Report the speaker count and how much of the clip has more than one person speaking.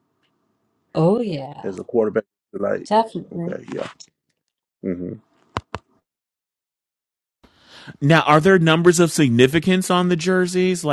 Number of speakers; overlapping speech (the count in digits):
3, about 3%